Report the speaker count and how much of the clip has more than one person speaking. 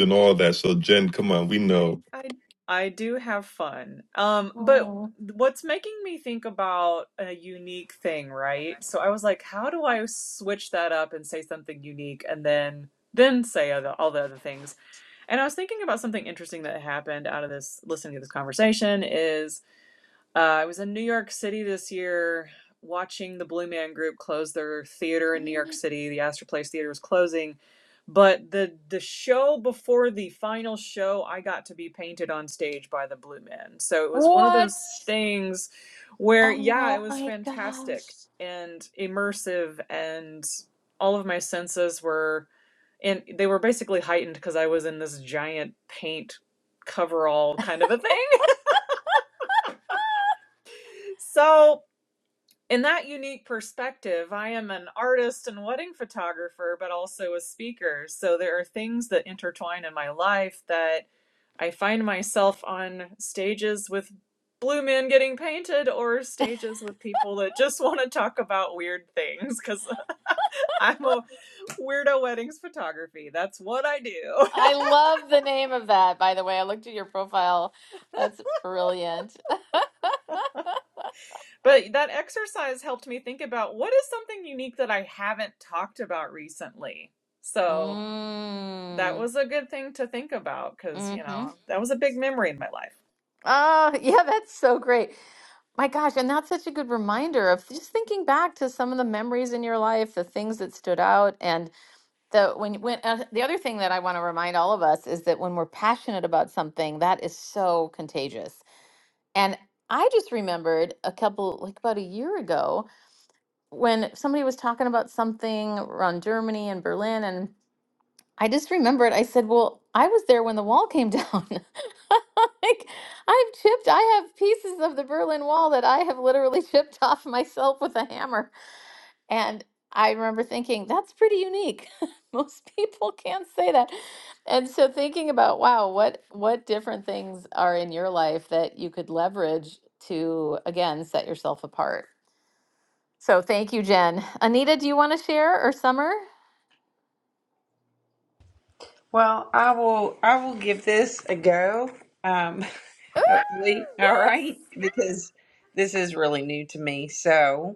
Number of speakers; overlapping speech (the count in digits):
4, about 2%